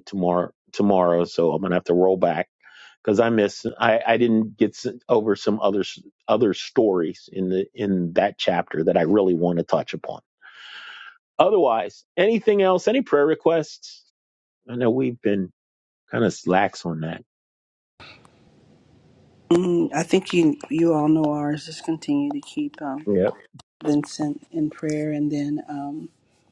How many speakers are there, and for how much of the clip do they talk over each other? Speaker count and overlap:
2, no overlap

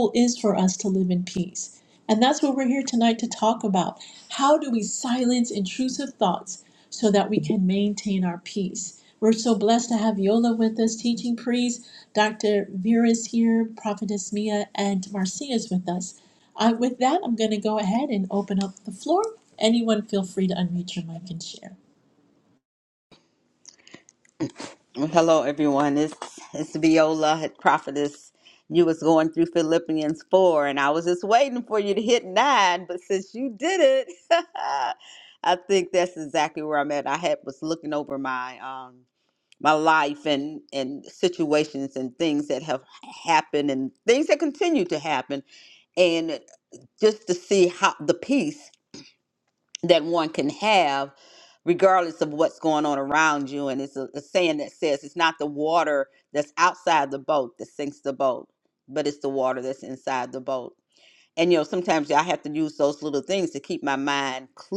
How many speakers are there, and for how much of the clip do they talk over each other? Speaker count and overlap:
2, no overlap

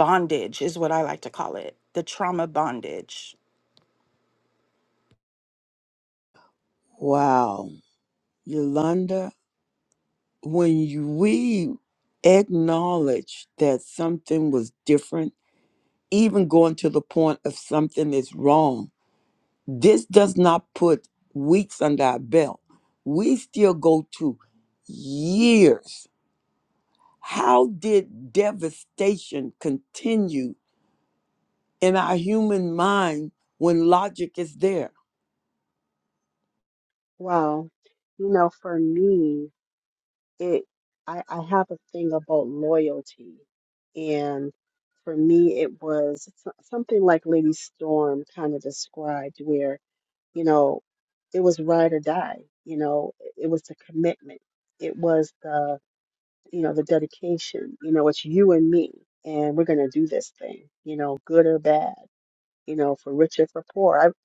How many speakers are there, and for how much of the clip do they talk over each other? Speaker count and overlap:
3, no overlap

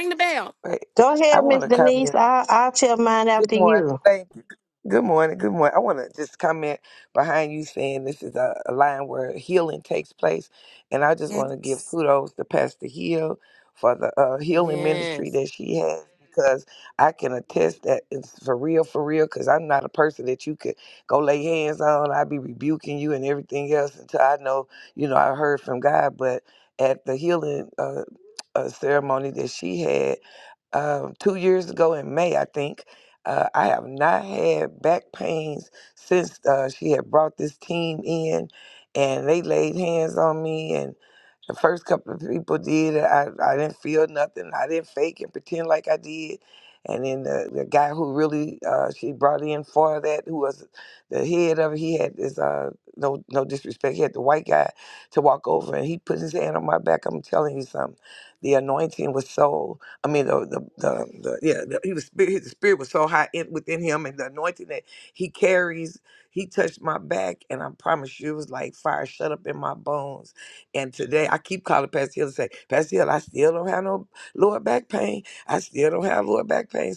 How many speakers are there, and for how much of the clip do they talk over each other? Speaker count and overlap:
3, about 3%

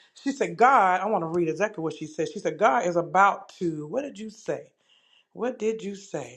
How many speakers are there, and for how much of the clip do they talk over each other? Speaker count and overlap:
1, no overlap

